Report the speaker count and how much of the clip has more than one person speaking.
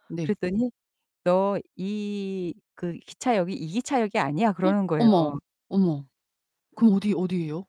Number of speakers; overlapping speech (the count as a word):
two, about 3%